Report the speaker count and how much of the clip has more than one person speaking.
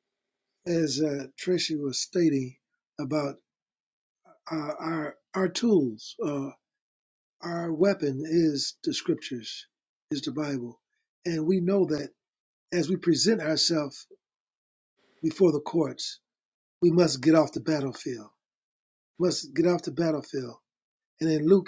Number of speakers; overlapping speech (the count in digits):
1, no overlap